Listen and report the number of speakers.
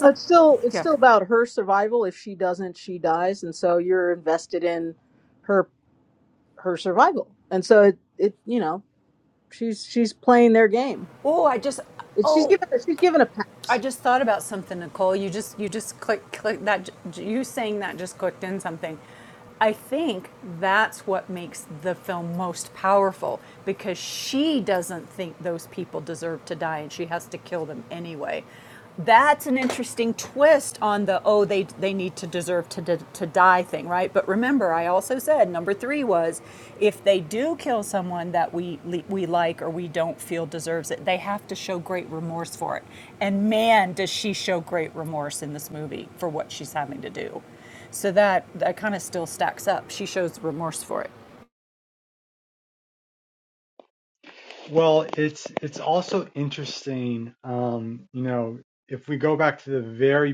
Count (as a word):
three